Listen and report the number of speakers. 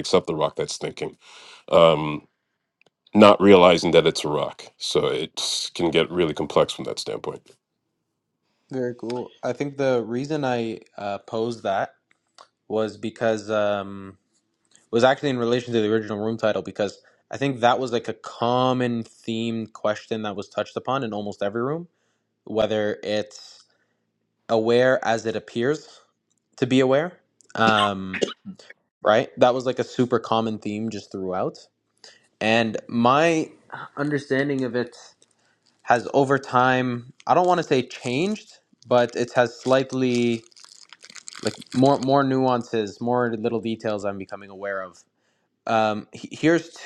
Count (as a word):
two